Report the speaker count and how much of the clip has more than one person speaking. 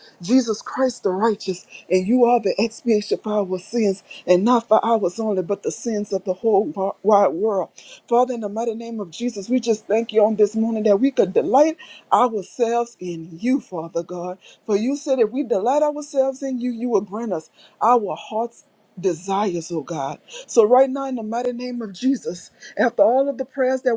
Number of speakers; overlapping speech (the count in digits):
1, no overlap